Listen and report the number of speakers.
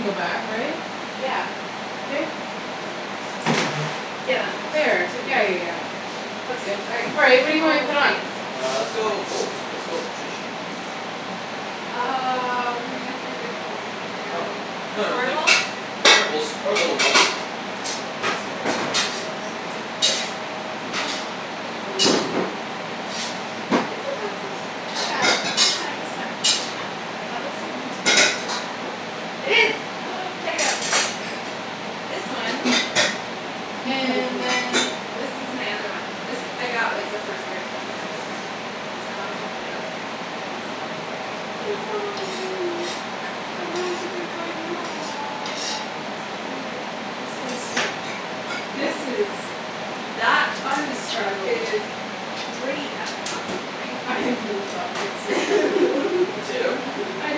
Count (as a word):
three